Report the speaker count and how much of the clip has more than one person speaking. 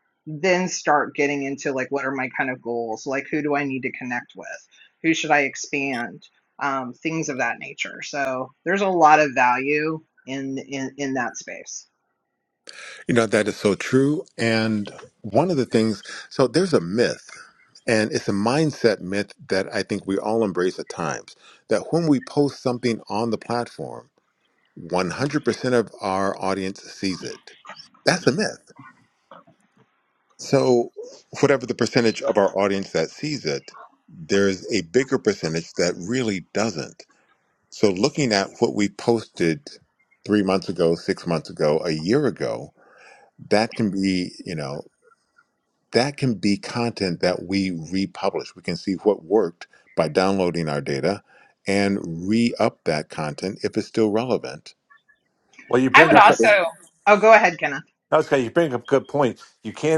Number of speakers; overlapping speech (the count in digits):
3, about 1%